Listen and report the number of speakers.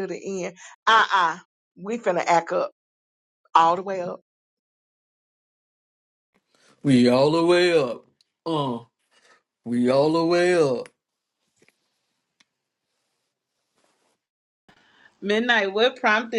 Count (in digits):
3